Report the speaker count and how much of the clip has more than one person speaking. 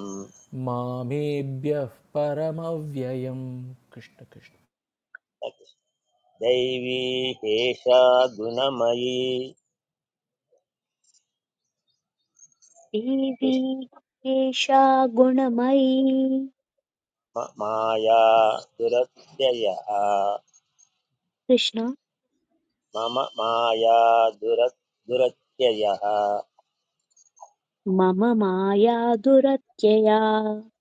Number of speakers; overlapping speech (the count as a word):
three, under 1%